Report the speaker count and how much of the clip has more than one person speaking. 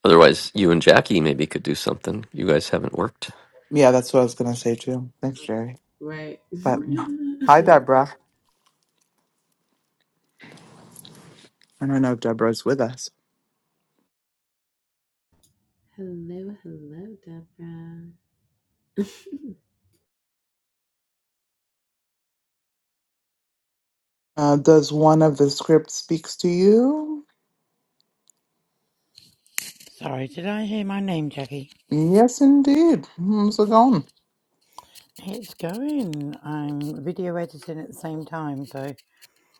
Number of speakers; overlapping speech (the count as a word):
four, no overlap